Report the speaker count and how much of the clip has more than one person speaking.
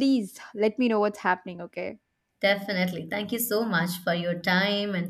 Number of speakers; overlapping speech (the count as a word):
two, no overlap